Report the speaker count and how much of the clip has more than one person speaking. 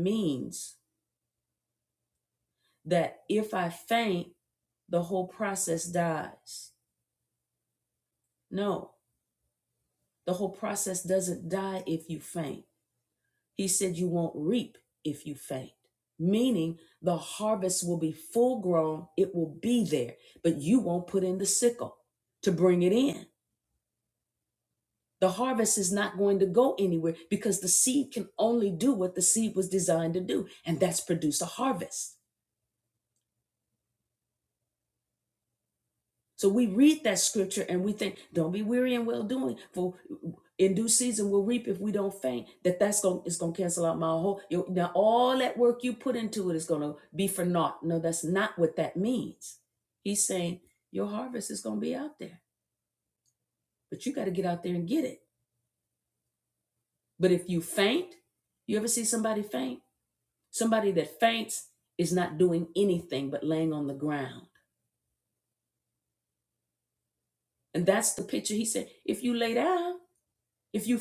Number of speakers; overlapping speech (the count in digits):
1, no overlap